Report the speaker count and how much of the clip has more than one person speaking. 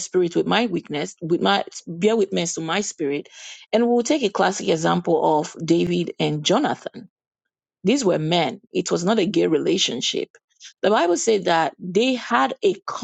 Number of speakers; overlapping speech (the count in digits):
1, no overlap